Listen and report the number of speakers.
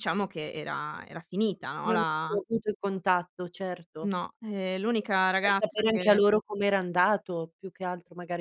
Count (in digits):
2